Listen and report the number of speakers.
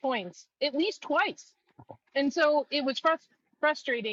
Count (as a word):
one